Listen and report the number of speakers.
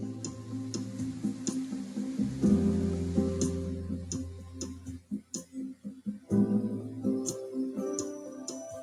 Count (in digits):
0